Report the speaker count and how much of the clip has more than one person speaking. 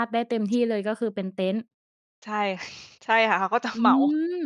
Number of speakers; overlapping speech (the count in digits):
2, about 6%